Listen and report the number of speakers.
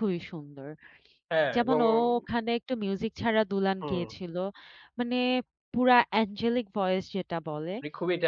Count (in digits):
2